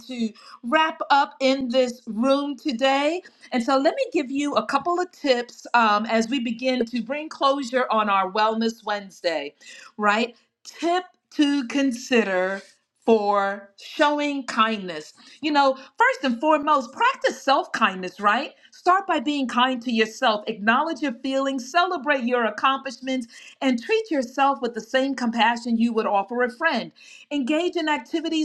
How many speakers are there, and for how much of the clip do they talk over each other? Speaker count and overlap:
one, no overlap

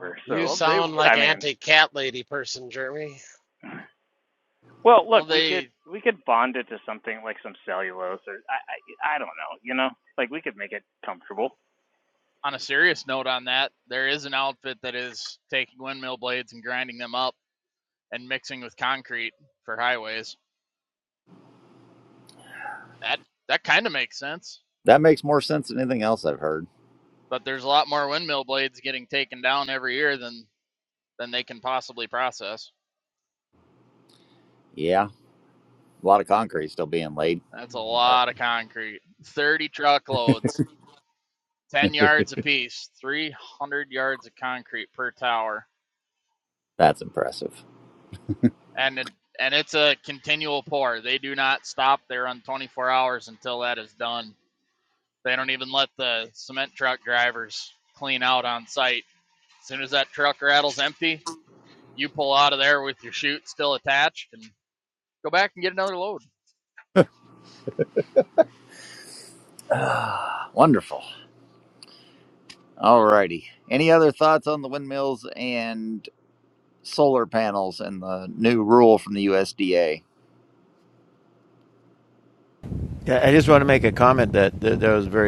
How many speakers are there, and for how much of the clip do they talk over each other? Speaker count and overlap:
five, about 2%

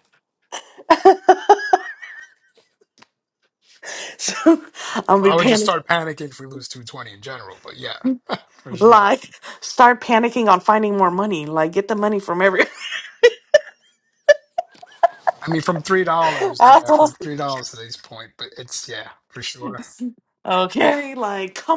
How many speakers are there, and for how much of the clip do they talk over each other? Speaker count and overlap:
two, about 5%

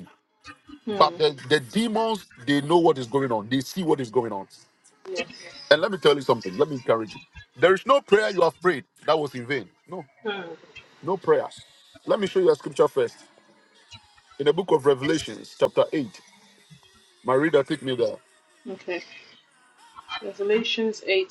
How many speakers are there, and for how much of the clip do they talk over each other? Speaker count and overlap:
two, about 1%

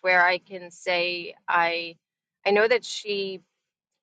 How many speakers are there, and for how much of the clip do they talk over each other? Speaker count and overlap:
one, no overlap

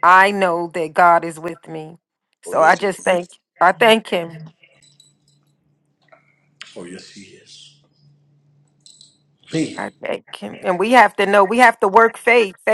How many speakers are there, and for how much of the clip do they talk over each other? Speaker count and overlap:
two, about 4%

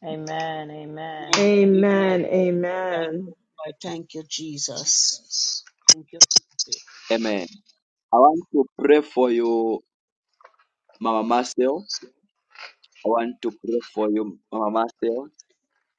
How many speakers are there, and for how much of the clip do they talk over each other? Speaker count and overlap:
four, about 9%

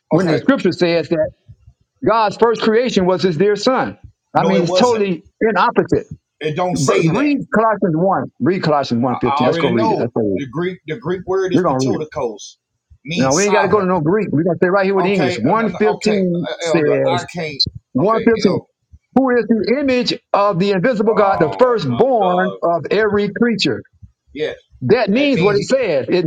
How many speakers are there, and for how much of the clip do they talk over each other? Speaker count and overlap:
two, about 33%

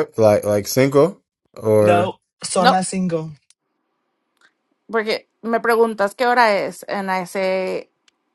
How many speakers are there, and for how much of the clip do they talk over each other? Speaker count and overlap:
three, about 5%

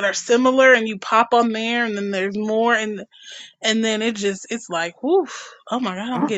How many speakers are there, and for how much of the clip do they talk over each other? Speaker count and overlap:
one, no overlap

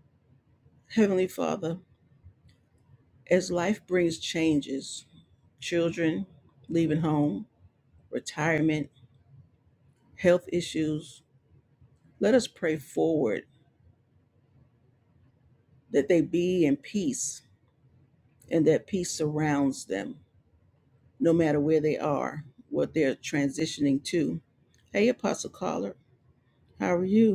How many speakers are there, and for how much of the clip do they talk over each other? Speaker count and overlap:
one, no overlap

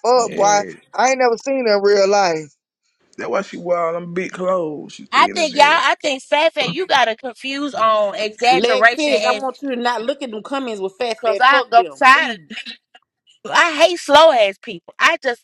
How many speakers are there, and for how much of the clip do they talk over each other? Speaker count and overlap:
four, about 22%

